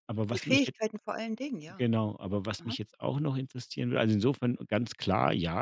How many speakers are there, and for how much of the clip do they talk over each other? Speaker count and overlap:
2, about 12%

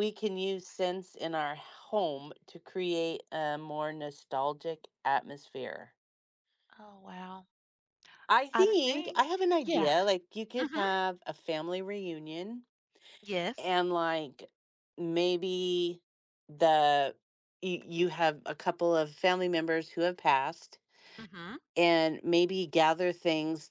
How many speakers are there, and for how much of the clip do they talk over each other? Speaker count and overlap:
2, about 5%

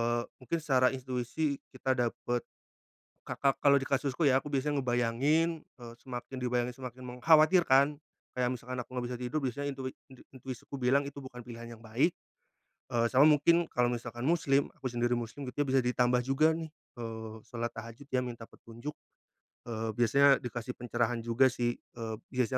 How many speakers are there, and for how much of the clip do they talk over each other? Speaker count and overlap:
1, no overlap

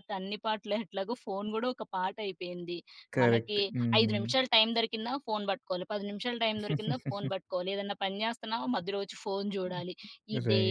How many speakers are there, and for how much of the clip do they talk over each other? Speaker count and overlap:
2, about 10%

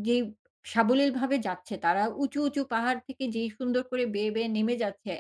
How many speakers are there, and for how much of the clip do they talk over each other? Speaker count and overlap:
1, no overlap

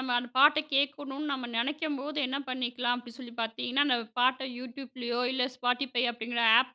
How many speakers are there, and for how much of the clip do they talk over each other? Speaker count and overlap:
1, no overlap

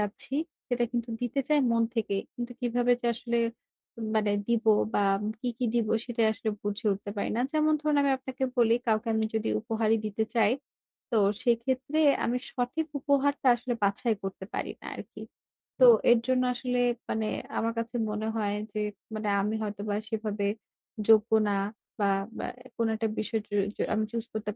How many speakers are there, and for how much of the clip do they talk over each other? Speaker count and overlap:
1, no overlap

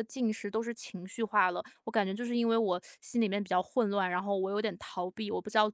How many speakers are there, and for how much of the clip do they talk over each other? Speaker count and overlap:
1, no overlap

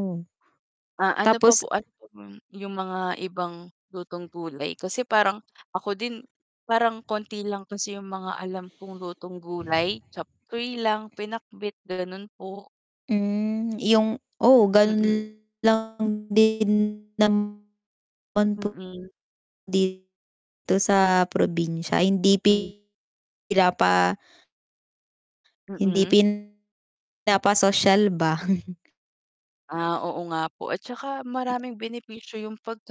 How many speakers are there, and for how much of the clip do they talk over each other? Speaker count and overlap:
2, about 4%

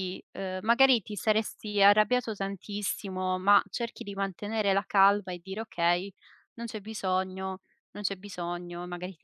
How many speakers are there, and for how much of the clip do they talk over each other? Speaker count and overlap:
1, no overlap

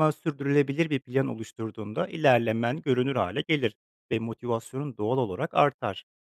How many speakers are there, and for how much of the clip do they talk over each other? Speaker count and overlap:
1, no overlap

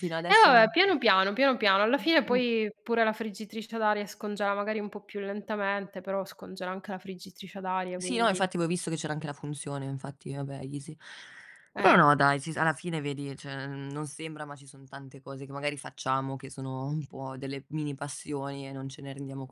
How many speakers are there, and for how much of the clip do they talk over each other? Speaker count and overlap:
2, about 6%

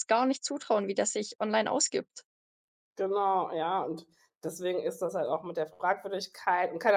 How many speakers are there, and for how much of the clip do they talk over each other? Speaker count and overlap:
2, no overlap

